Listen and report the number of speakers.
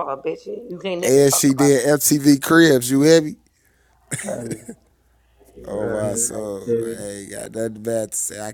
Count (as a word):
three